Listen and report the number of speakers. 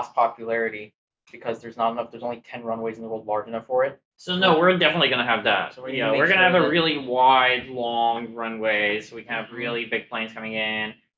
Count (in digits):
2